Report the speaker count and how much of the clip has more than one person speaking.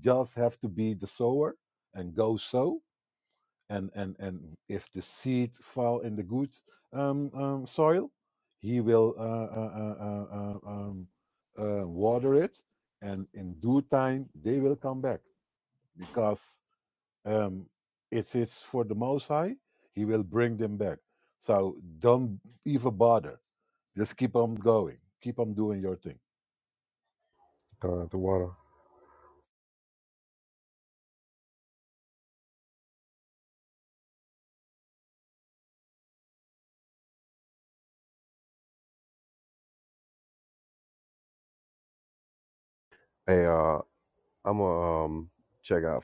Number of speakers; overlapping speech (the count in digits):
2, no overlap